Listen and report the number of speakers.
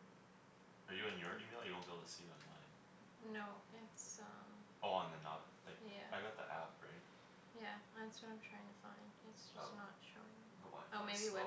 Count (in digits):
2